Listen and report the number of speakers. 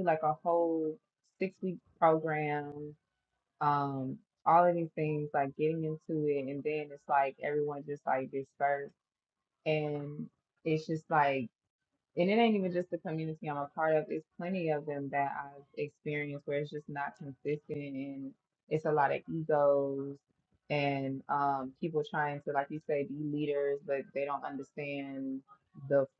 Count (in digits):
1